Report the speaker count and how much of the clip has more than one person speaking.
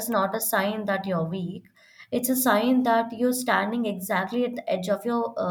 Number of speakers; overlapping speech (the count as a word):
one, no overlap